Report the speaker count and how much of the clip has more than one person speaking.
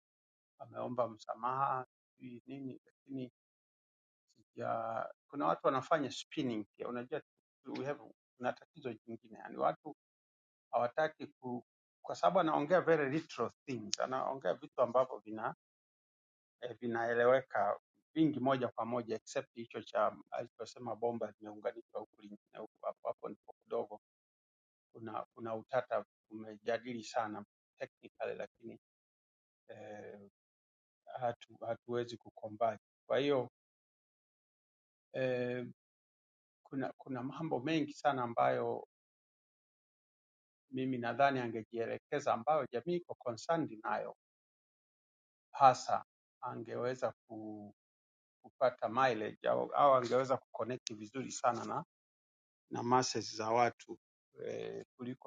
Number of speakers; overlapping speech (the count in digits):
1, no overlap